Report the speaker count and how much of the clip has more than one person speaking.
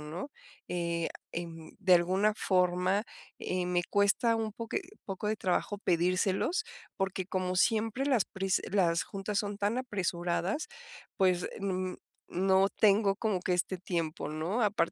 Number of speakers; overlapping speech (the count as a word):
one, no overlap